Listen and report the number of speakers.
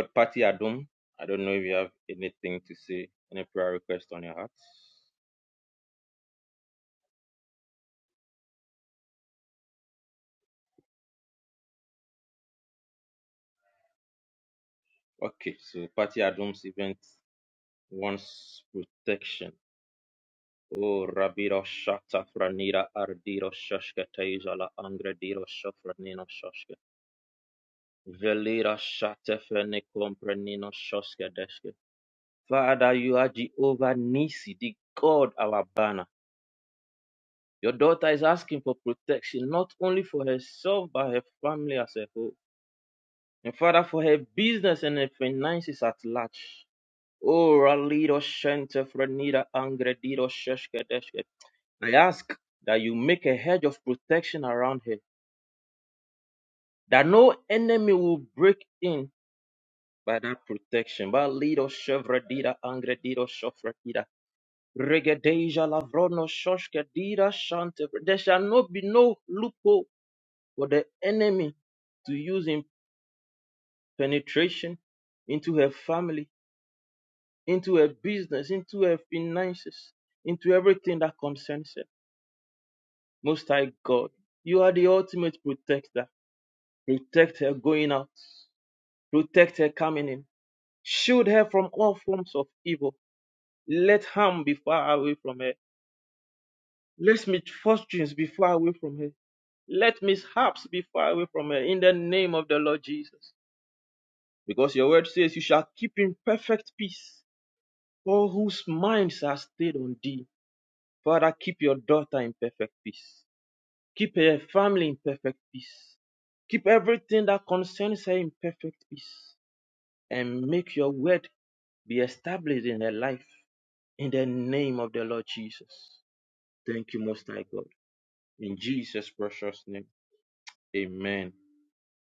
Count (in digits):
1